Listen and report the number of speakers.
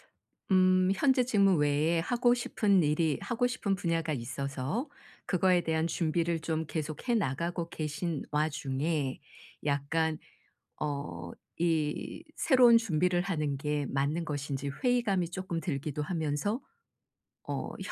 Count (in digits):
1